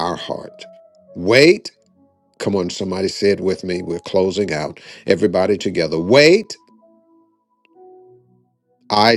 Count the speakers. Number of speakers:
one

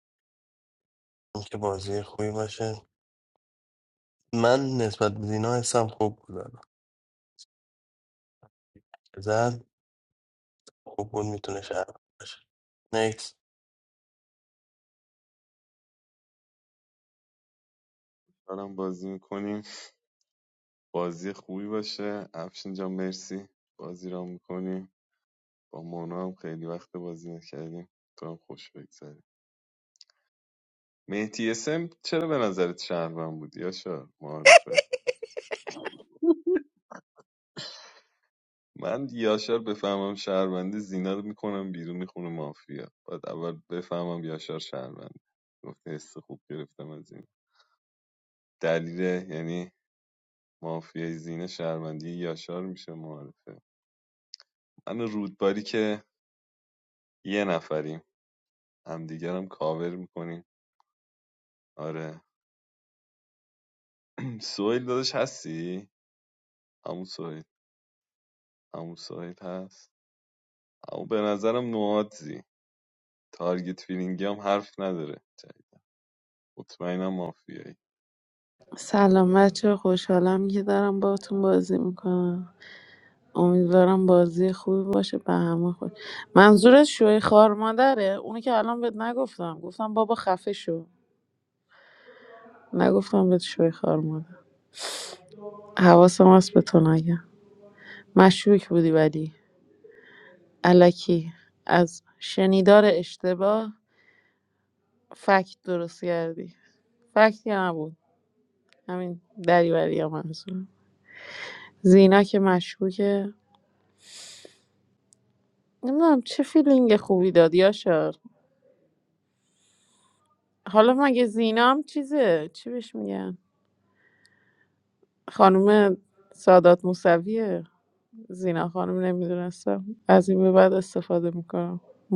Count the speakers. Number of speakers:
three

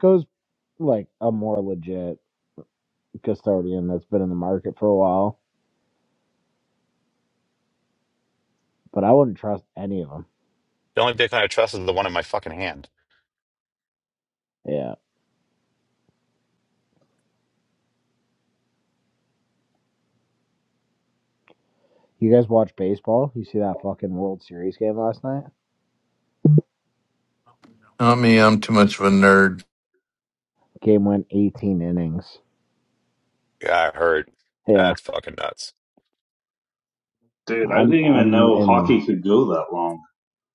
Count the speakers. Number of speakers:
four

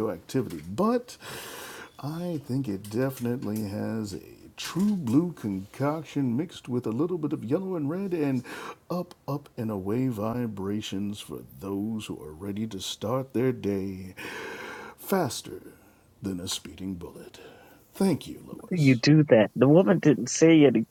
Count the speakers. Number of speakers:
two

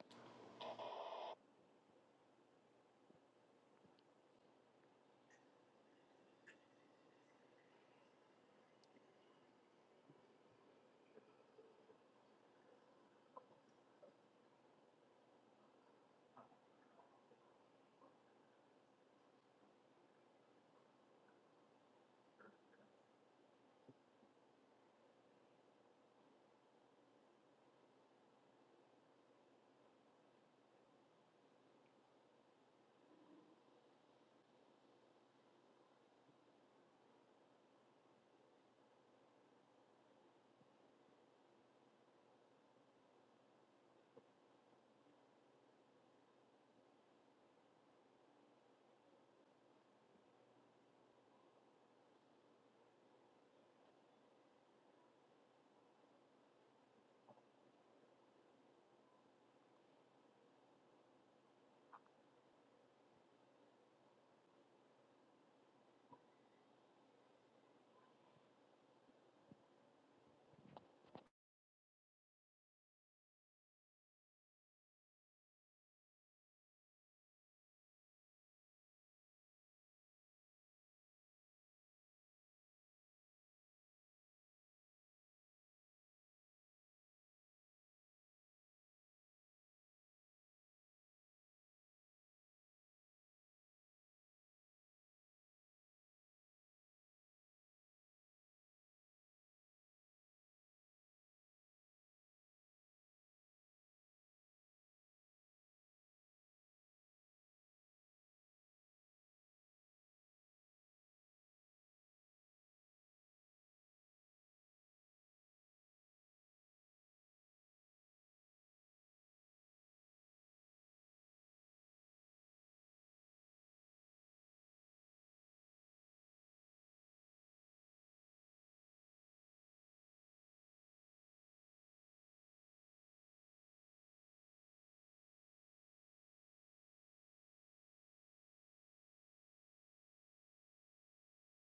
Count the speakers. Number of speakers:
zero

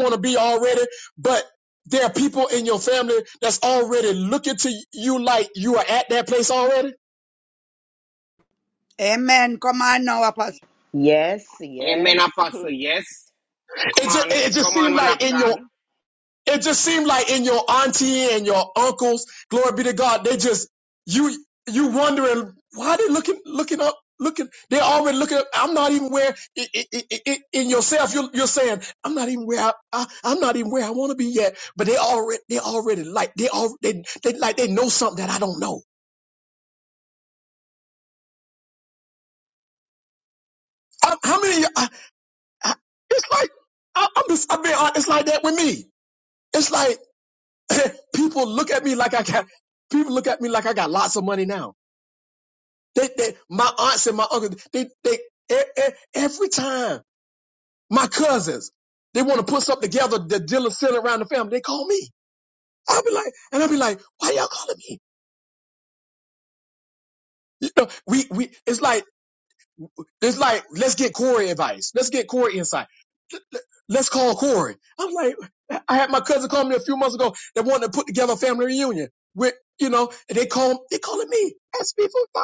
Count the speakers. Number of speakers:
four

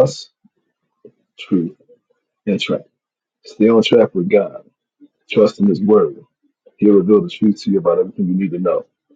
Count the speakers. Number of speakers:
one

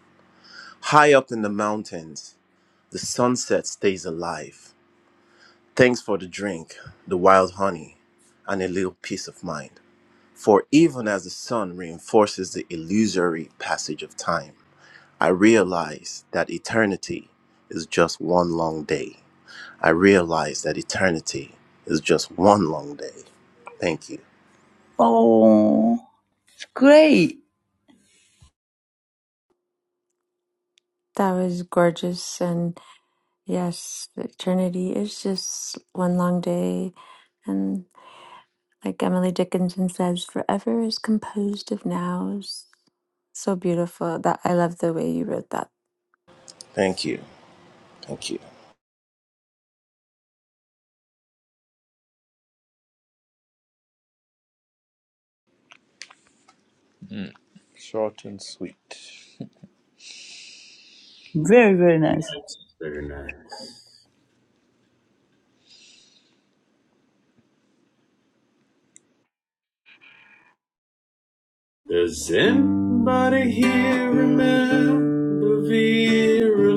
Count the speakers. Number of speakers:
five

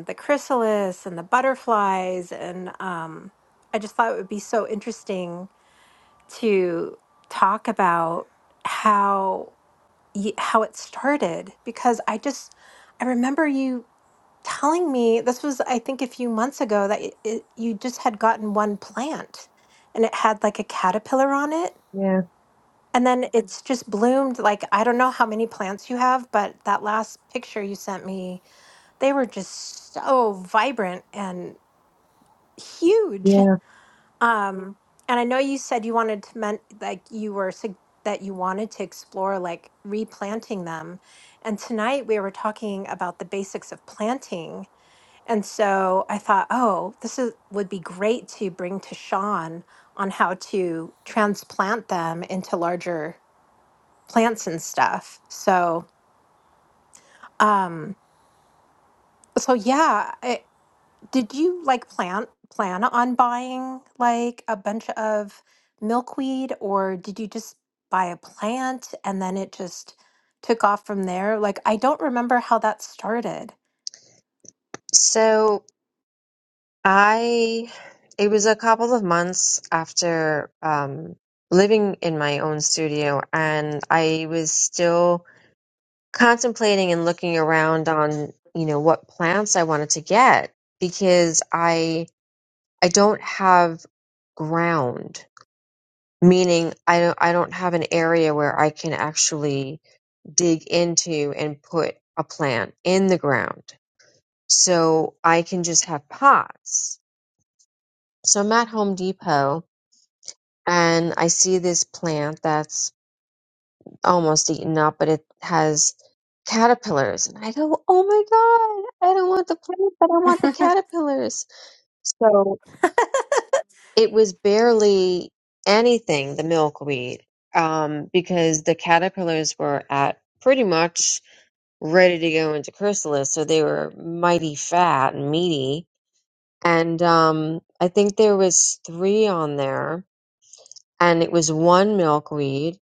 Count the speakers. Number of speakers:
two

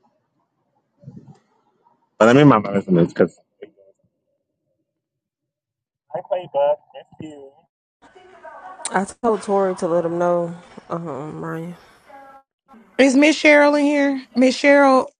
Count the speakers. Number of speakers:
three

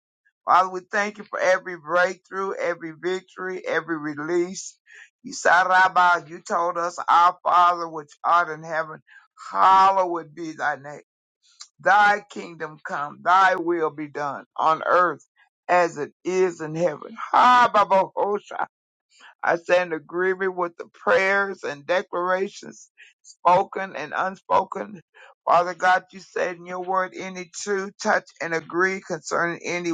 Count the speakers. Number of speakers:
one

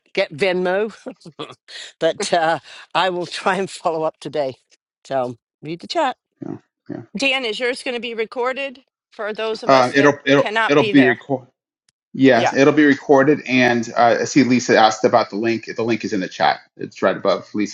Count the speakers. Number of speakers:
three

